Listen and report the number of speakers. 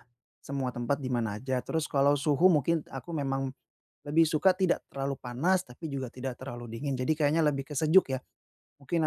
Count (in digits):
1